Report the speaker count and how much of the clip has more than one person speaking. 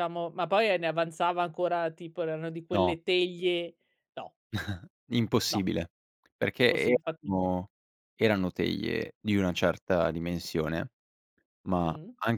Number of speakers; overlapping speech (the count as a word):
two, about 10%